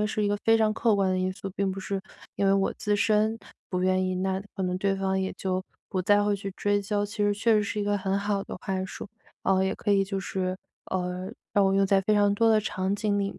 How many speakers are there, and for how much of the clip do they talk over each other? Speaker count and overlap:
one, no overlap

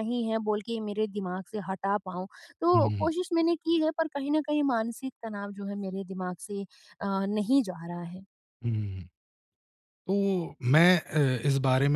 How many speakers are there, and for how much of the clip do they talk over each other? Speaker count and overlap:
two, about 3%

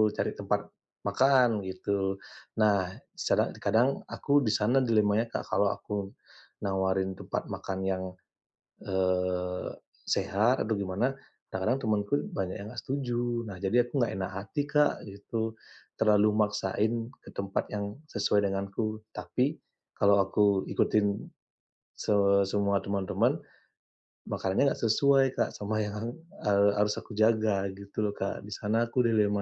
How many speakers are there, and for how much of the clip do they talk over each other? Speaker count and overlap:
one, no overlap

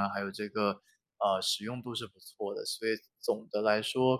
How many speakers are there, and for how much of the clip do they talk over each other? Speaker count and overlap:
one, no overlap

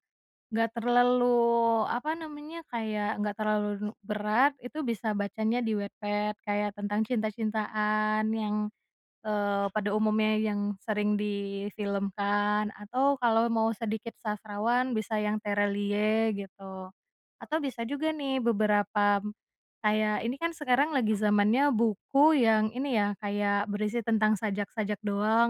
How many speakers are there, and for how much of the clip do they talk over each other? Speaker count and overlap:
one, no overlap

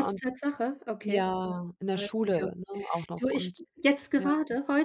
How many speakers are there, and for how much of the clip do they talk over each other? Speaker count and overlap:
two, about 30%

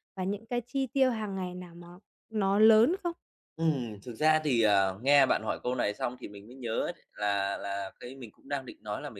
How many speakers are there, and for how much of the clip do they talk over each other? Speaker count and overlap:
two, no overlap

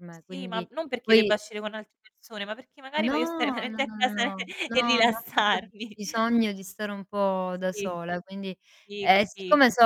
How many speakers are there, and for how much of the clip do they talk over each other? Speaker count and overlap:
two, about 36%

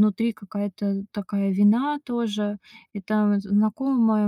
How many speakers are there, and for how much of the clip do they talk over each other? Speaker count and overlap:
one, no overlap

